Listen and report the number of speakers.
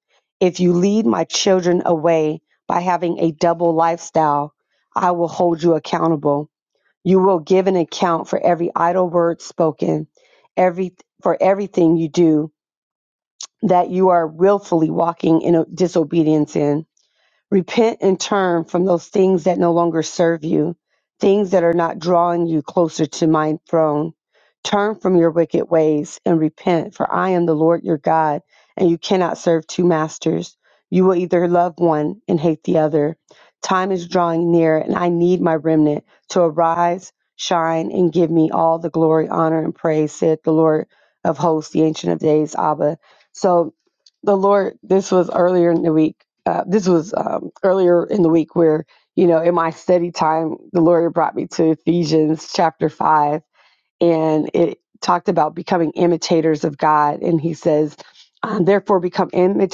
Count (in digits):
1